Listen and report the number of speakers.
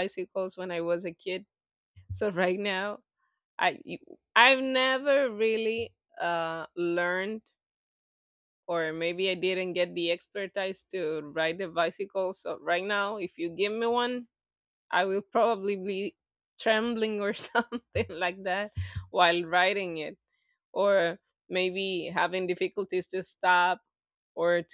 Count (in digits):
1